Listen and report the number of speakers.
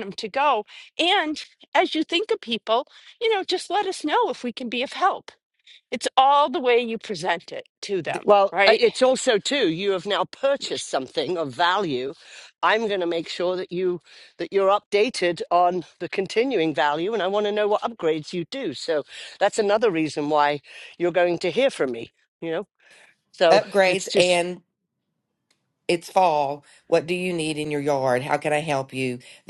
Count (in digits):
3